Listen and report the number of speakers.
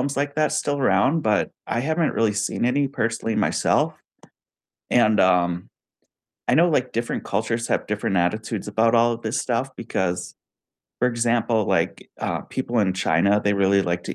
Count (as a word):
one